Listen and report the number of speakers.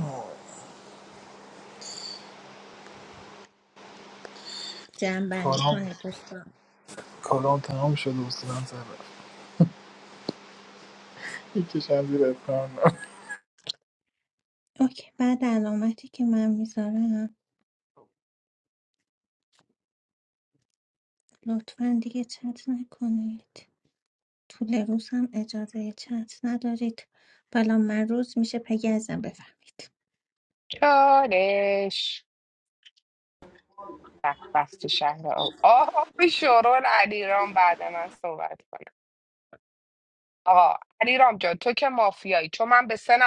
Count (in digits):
3